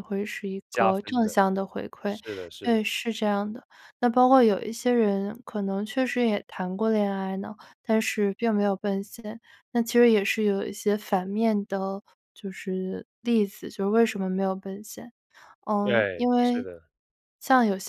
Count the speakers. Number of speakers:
two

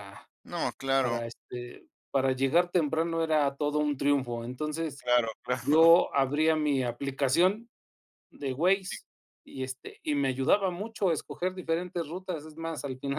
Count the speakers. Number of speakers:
two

